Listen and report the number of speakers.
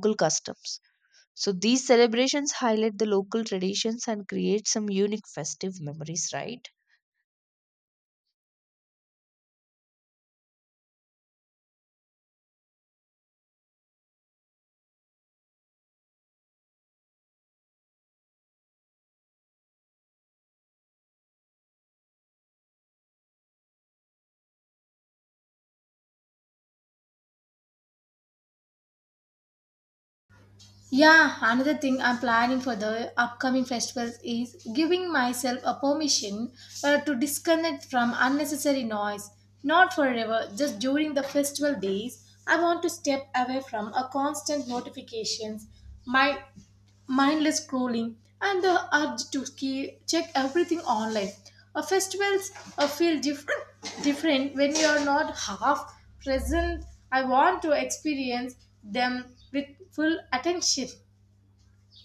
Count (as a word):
two